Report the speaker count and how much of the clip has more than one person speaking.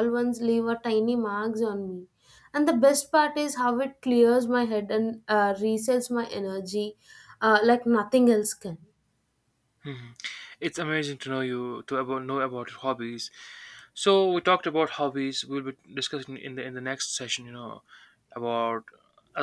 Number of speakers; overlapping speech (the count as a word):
two, no overlap